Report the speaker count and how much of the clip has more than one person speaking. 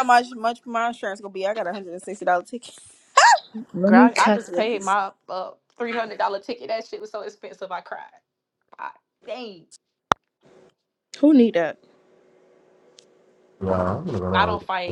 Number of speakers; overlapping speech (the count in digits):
4, about 9%